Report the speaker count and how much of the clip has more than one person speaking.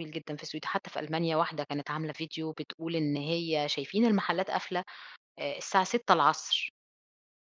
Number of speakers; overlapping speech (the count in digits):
1, no overlap